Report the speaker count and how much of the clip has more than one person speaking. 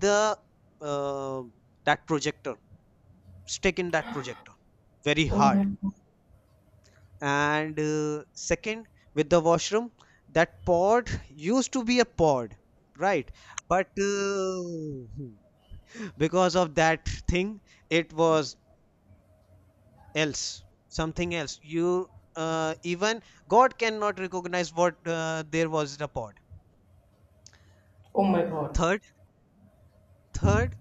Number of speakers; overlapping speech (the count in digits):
2, about 1%